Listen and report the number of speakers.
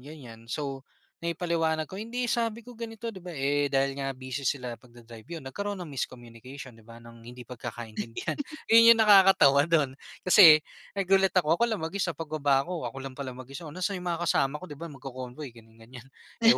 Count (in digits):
1